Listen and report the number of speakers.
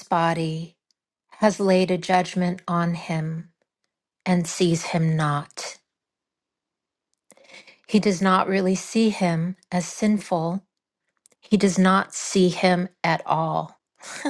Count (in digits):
1